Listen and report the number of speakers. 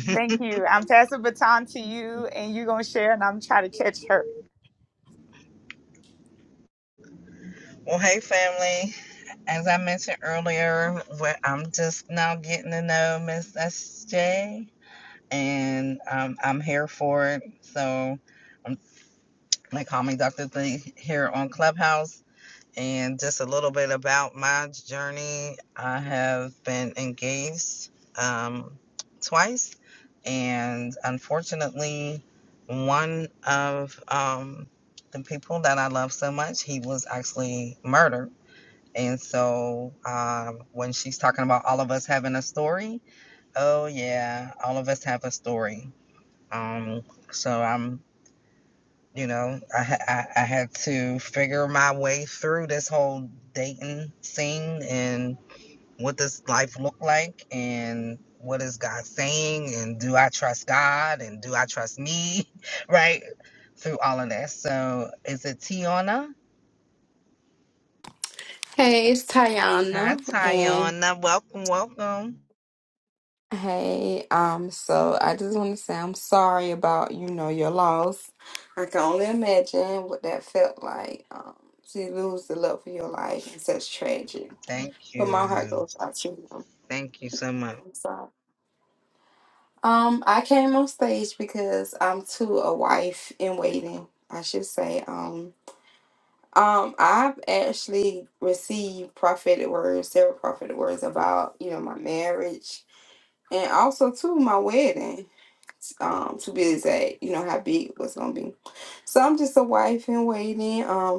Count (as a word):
three